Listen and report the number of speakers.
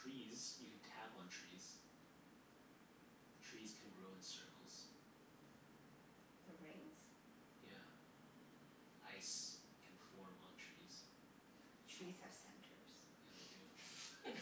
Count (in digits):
2